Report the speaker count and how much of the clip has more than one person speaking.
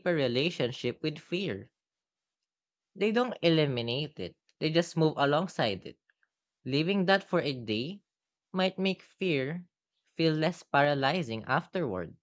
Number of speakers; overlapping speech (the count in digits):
1, no overlap